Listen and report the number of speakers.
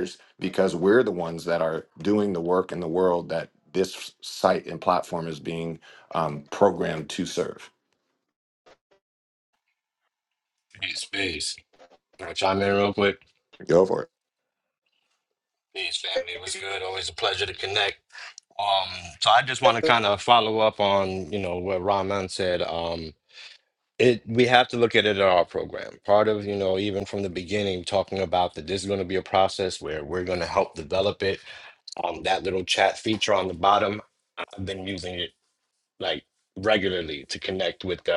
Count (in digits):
2